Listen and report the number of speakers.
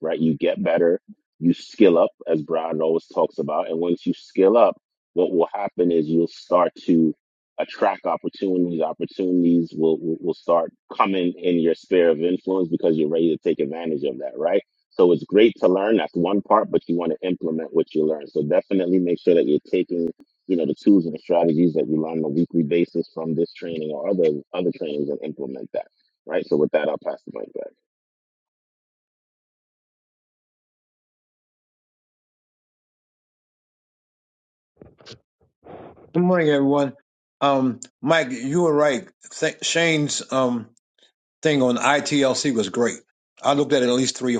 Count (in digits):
2